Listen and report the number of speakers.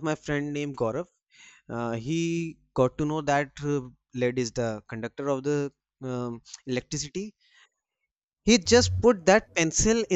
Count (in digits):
1